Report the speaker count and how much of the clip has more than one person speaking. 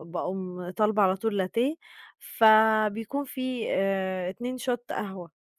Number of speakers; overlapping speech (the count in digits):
1, no overlap